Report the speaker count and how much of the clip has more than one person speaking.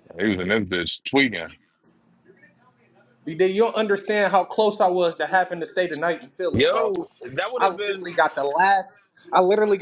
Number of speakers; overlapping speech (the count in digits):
3, about 9%